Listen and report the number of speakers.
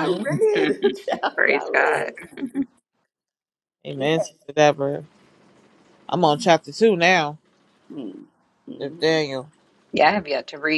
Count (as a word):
three